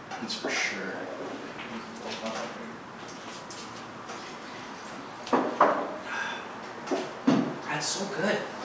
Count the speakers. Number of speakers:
1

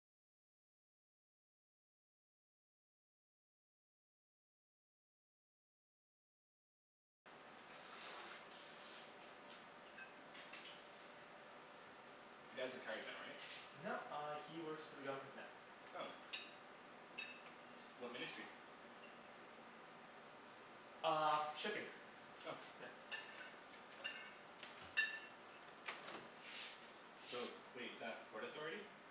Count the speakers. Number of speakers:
2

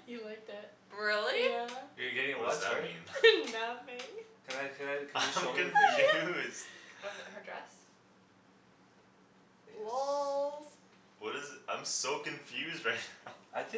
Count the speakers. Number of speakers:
4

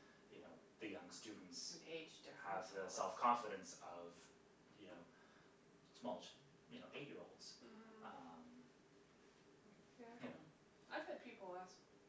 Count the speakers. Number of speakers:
3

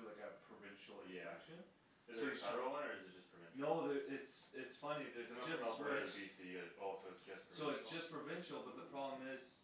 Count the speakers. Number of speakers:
2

